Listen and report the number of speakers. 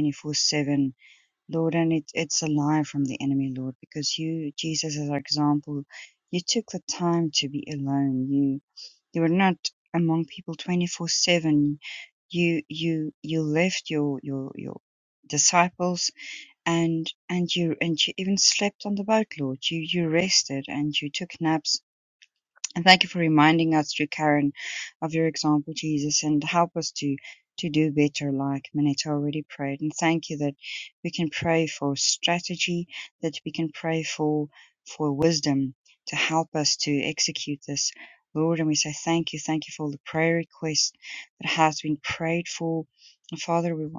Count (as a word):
one